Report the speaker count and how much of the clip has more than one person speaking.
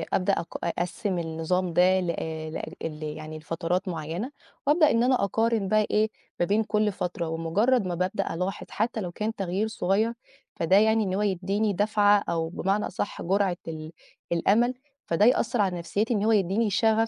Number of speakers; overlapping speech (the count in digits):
1, no overlap